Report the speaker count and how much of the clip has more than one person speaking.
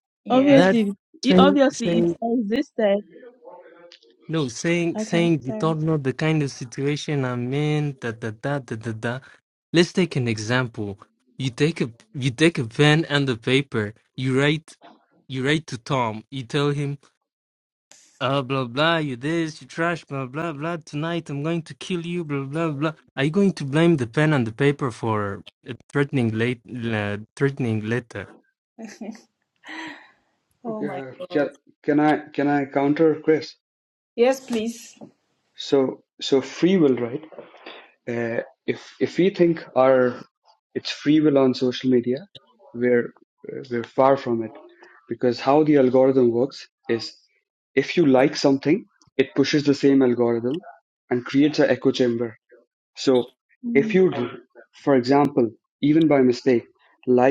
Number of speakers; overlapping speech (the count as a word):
four, about 6%